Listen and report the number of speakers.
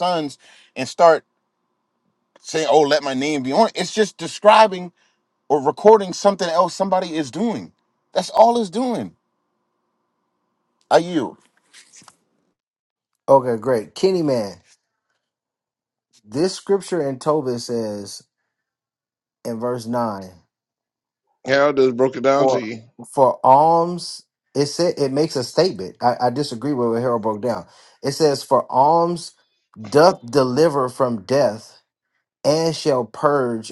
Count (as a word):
three